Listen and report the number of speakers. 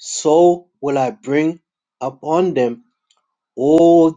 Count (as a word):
one